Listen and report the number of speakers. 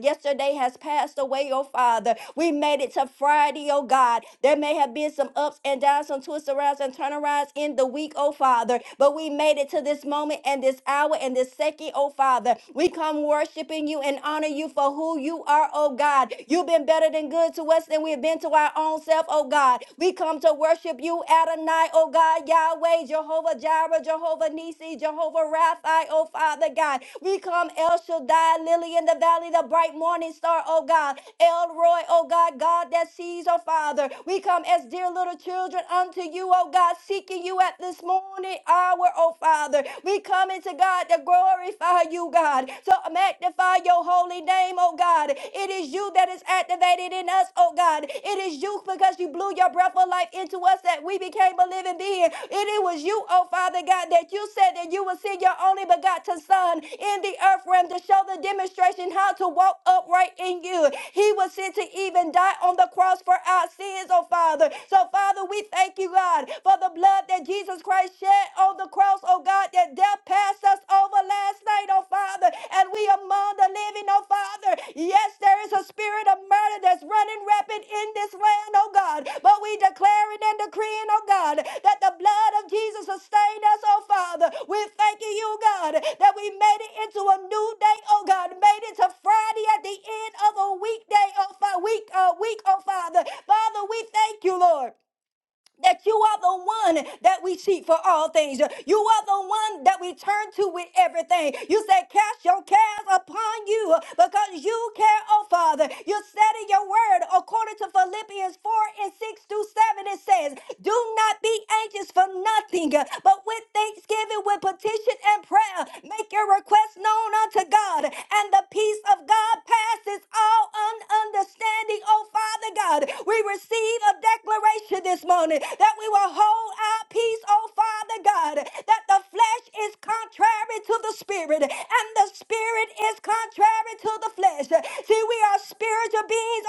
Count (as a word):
one